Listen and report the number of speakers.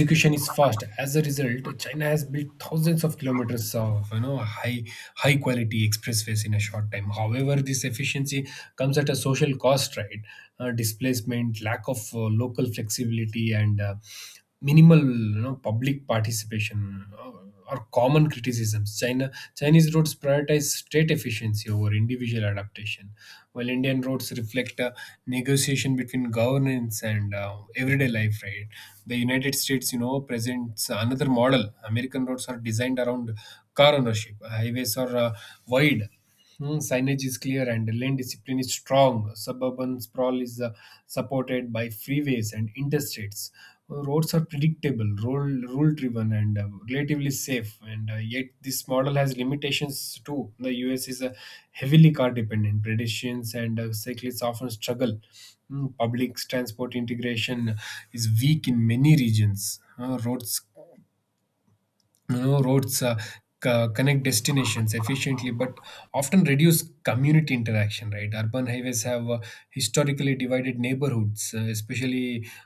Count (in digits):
1